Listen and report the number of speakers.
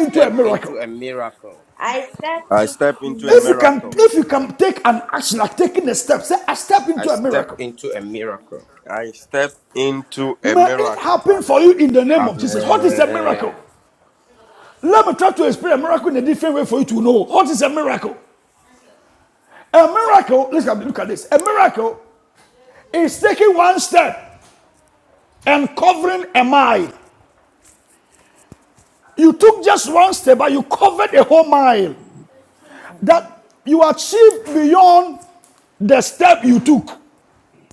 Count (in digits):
4